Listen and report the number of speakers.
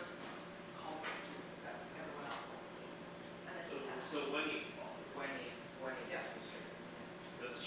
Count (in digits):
3